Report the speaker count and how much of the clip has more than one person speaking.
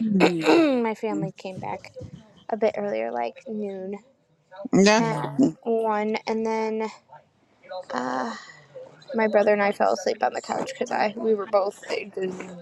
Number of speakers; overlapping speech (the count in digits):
2, about 4%